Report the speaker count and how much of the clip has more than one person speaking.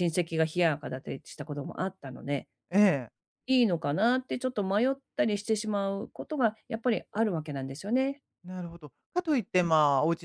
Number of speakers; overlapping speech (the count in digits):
2, about 1%